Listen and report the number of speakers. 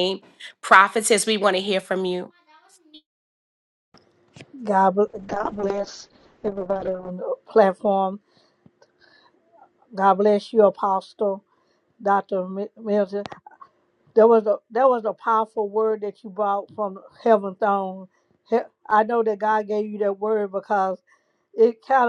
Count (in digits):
2